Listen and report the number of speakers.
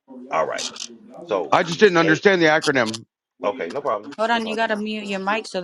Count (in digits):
3